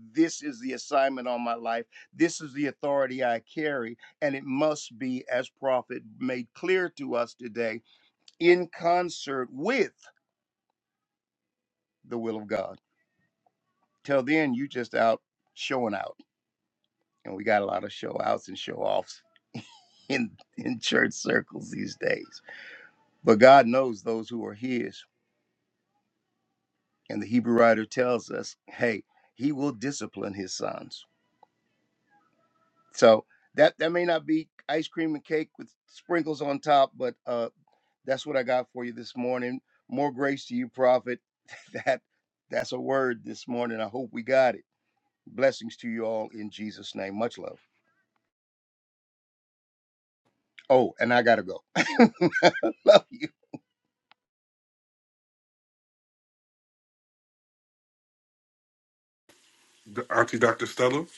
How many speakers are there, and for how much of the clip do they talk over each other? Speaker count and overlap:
2, no overlap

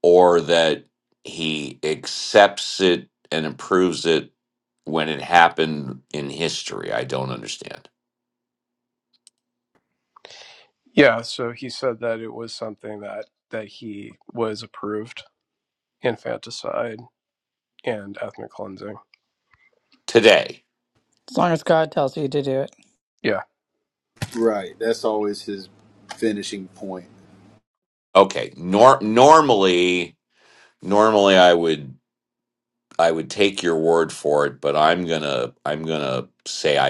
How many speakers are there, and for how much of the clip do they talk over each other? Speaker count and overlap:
4, no overlap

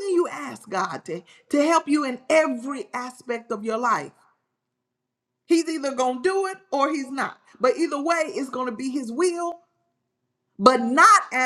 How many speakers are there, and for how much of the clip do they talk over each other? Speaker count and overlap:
1, no overlap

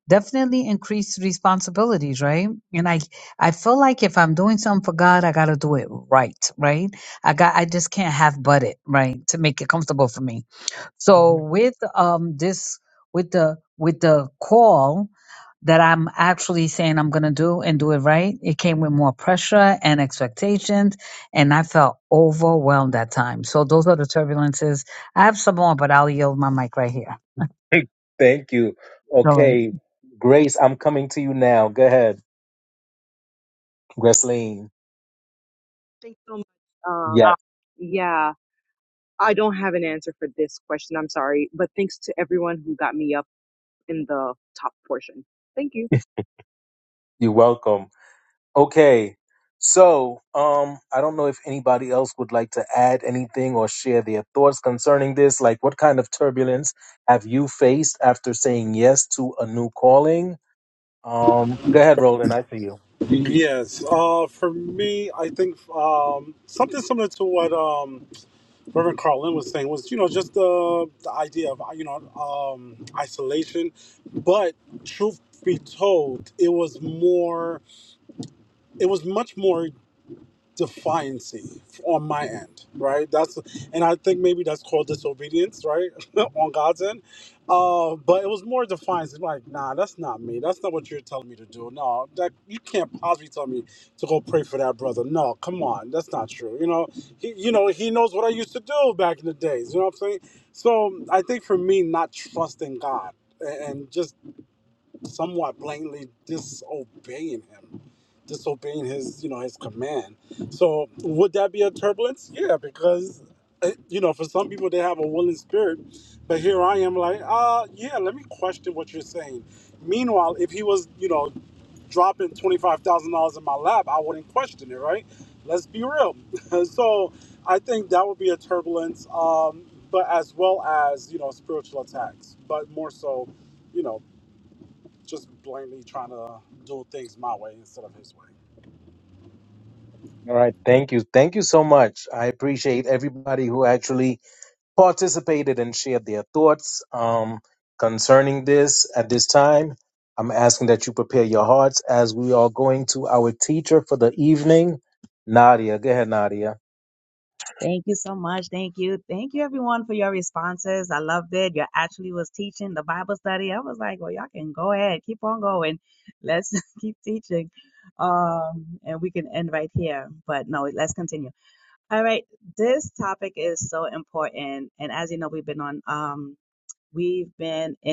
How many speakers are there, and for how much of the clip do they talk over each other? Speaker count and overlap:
5, under 1%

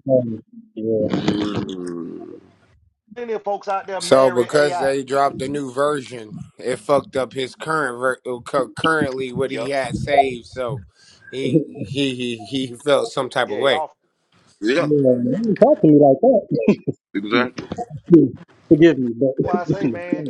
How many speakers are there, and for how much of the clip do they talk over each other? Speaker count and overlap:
4, about 12%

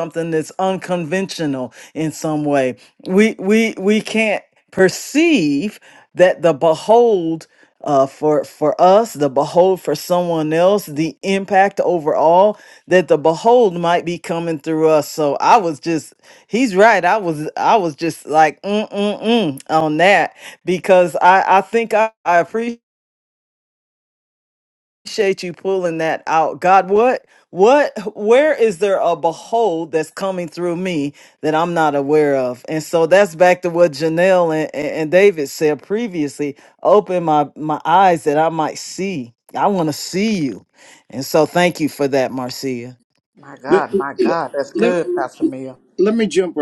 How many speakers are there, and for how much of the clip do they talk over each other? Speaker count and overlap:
3, about 1%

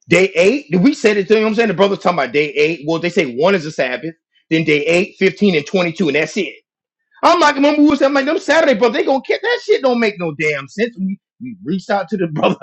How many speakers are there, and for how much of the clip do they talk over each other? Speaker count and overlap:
1, no overlap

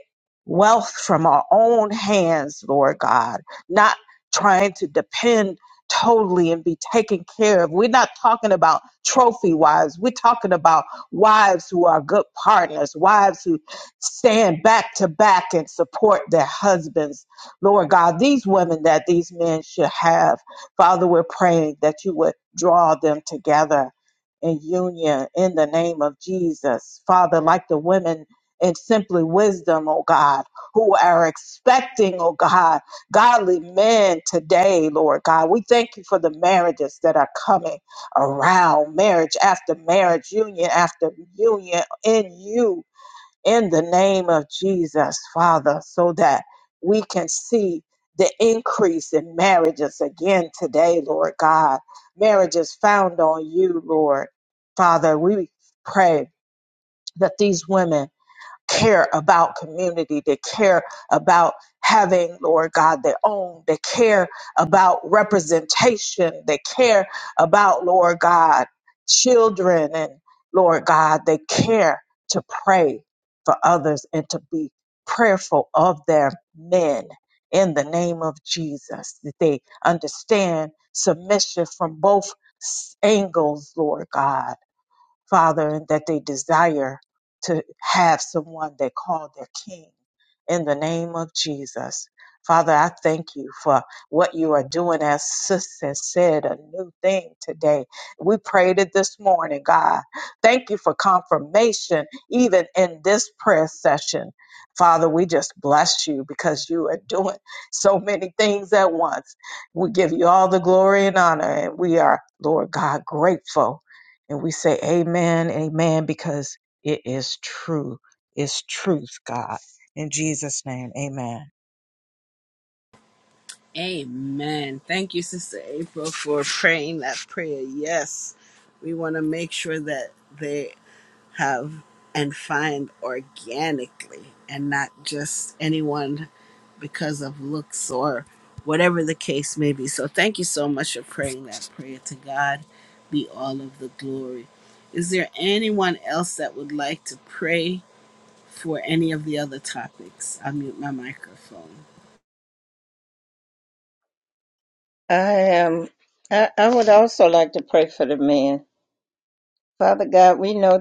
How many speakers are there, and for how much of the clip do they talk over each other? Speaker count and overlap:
3, no overlap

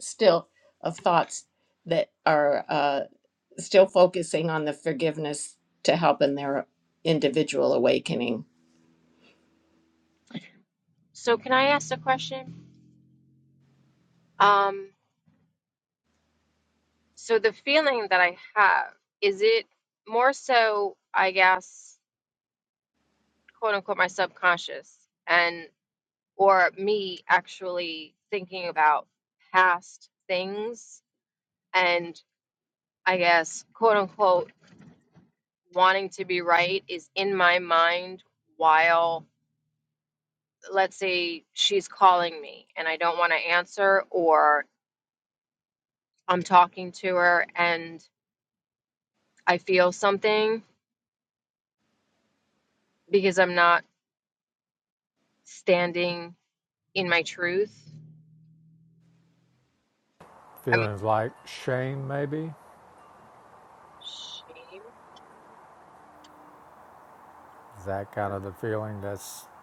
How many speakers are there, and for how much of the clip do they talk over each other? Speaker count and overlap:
3, under 1%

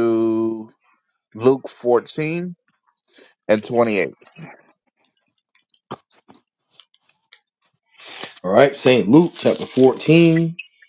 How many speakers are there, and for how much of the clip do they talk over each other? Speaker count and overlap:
2, no overlap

